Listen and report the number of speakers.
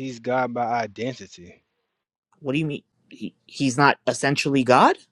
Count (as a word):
two